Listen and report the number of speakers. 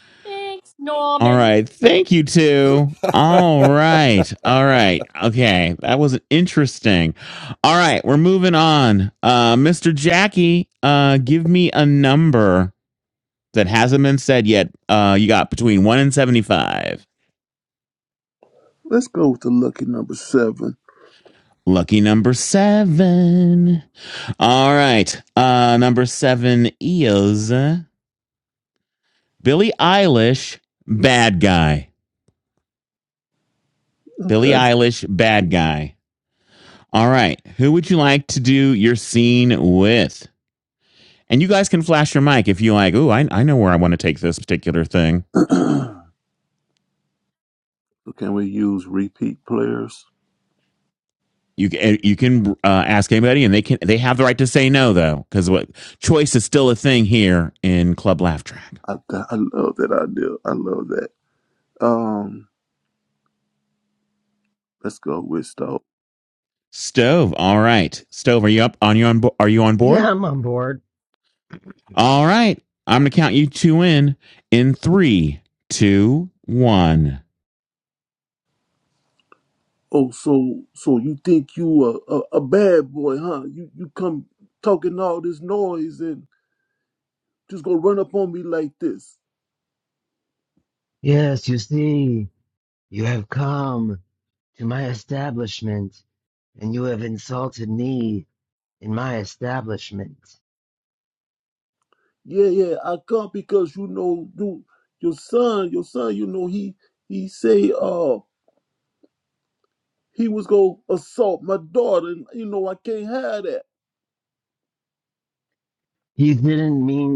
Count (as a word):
four